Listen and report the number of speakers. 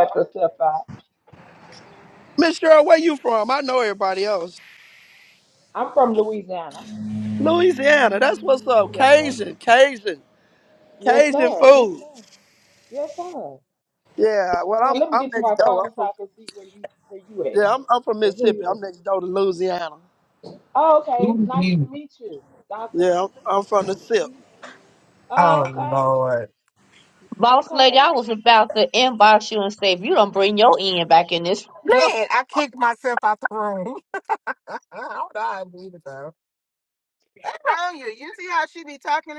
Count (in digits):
4